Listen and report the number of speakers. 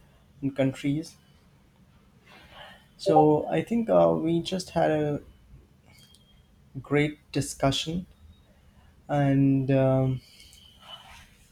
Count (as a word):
one